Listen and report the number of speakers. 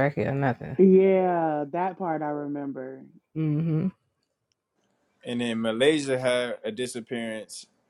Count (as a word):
three